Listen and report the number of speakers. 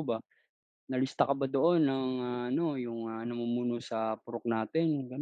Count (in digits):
1